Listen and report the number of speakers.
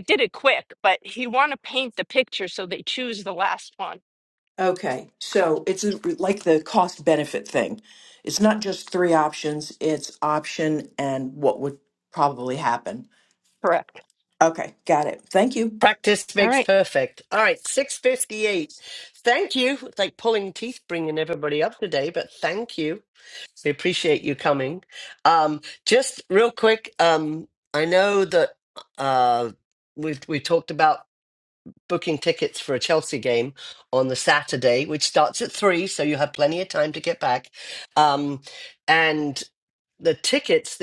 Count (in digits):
3